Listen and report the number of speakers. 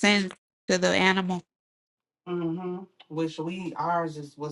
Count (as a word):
two